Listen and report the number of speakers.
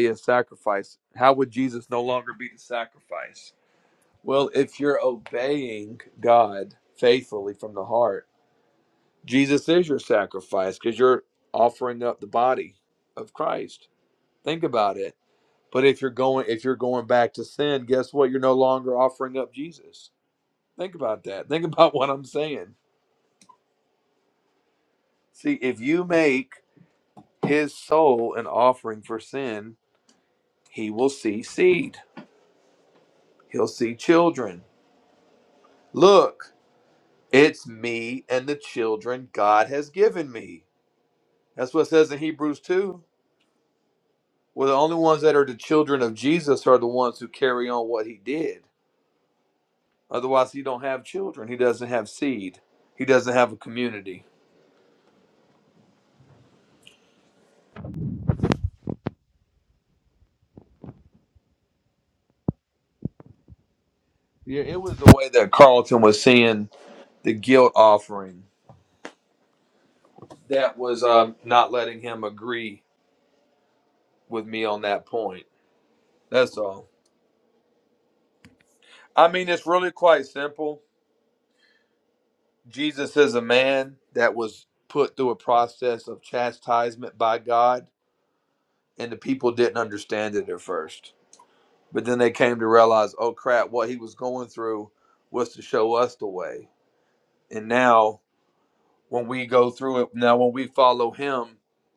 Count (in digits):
1